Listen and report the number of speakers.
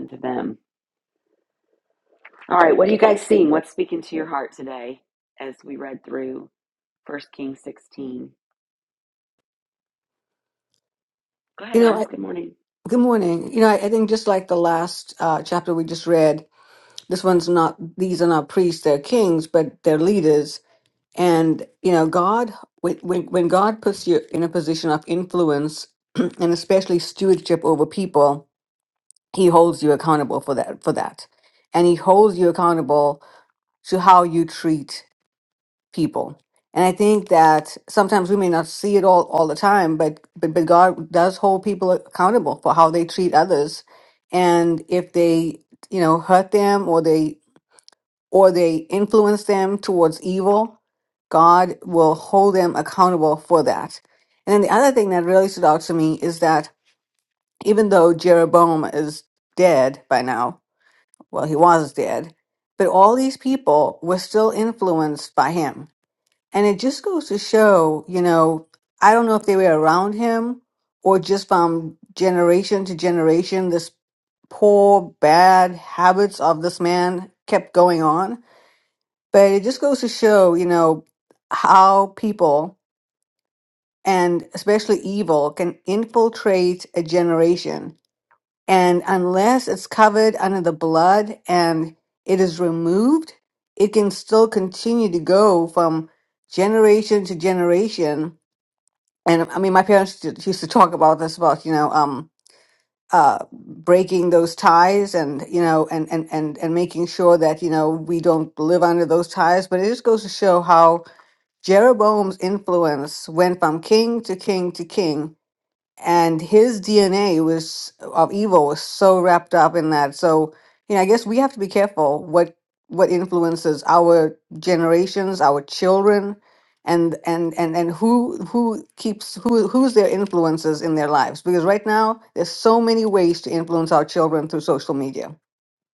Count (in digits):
2